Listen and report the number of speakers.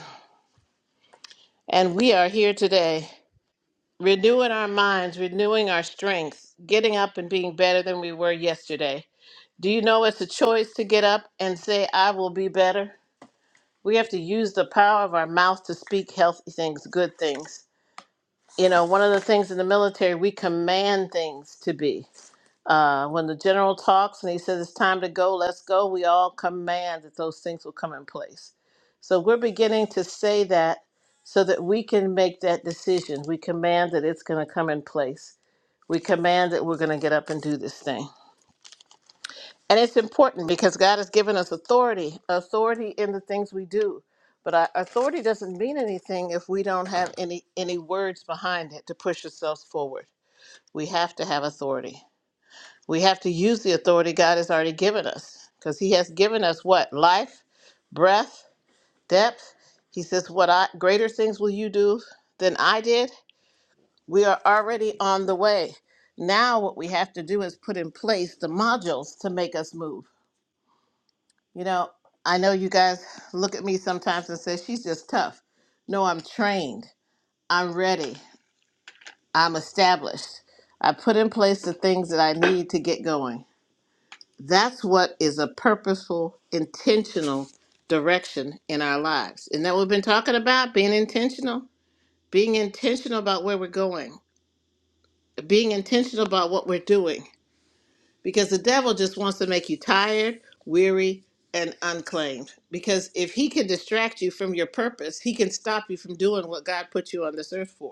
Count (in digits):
1